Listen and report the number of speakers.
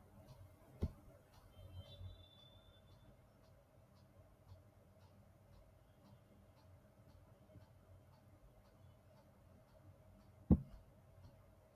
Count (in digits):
0